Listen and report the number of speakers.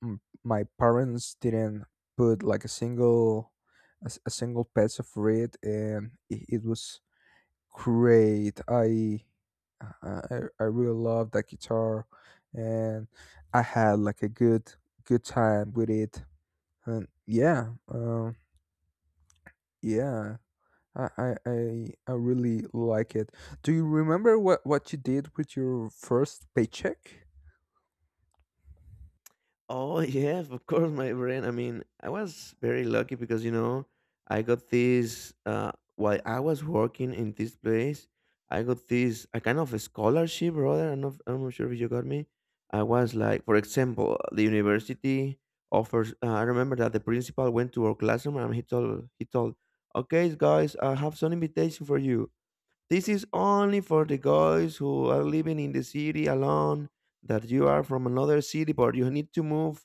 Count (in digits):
2